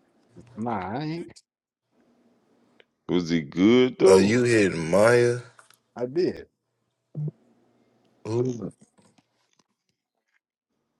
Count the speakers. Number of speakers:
3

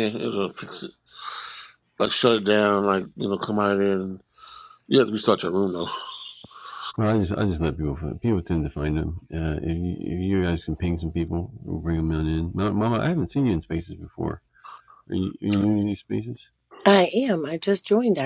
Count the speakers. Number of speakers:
3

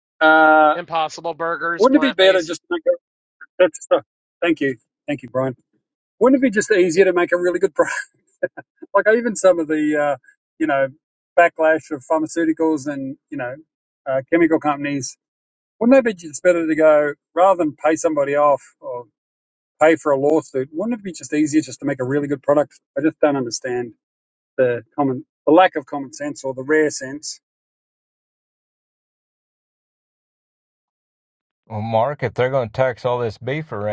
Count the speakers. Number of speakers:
3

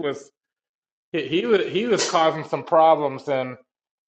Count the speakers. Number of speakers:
1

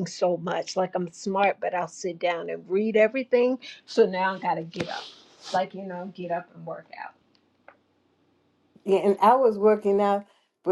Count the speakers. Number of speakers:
2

